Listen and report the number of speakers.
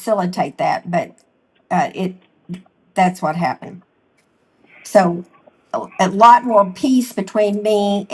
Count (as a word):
one